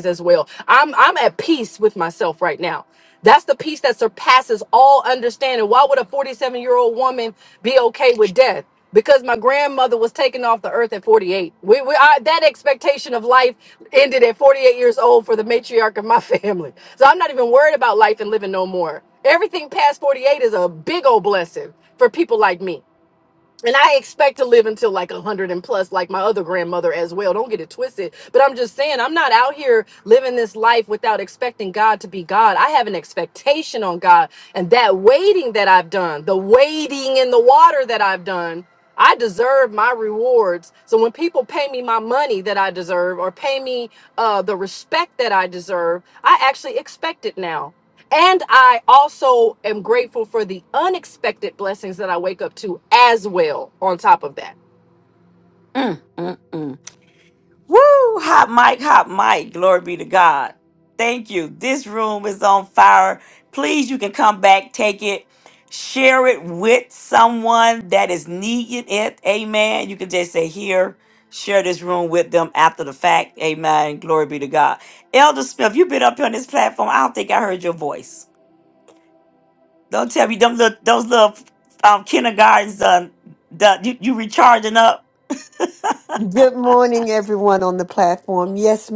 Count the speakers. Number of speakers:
3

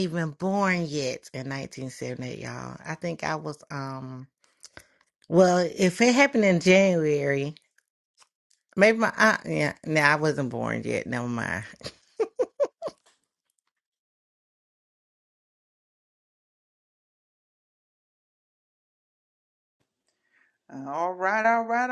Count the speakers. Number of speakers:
2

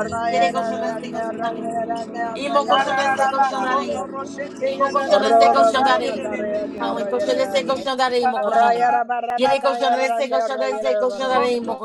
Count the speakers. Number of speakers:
2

